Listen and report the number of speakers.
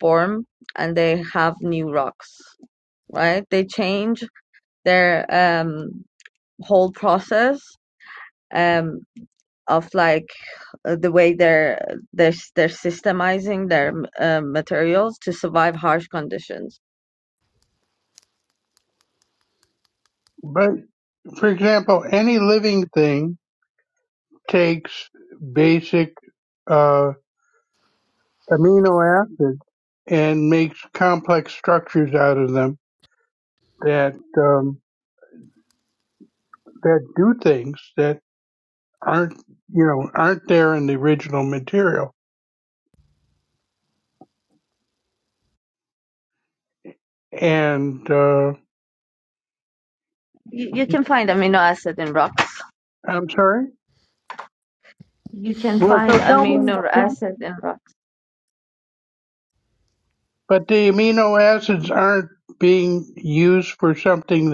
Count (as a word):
two